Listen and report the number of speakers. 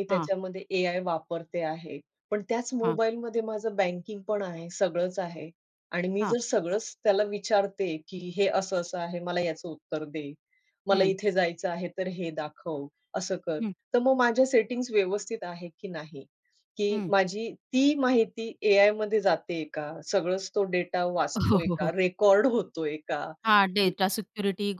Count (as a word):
two